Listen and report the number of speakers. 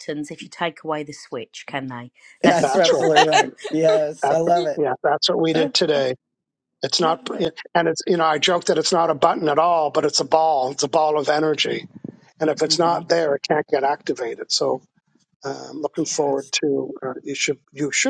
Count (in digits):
3